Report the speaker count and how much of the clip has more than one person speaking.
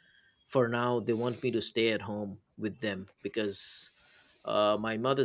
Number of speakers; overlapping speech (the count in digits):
1, no overlap